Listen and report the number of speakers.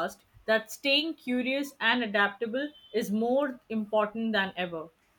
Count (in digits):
1